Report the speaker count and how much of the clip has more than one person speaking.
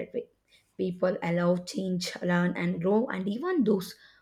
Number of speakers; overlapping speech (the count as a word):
one, no overlap